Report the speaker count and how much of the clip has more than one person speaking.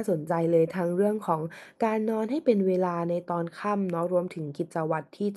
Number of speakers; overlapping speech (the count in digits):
1, no overlap